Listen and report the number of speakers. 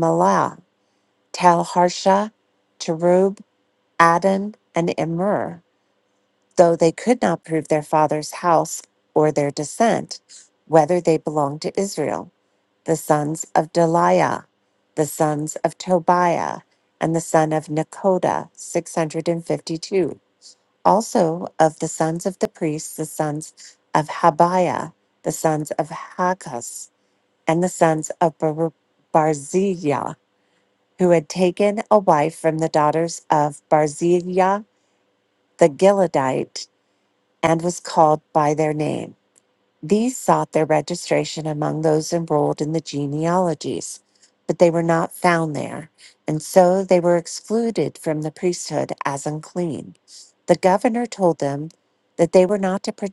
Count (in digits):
1